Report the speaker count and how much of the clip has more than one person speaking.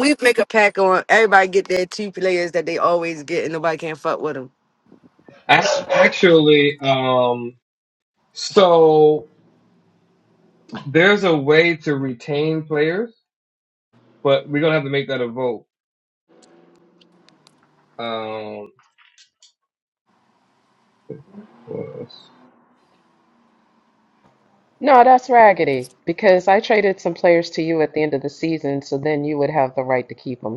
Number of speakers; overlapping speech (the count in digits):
3, no overlap